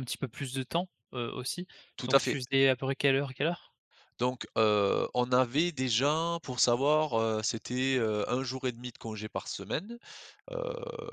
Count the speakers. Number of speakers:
2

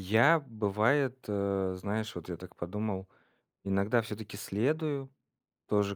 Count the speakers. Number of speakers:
1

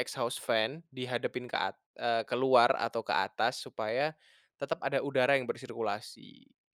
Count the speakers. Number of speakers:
1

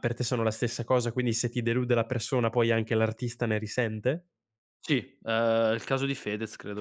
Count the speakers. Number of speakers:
2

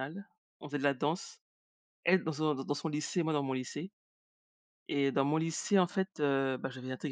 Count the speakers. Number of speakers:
1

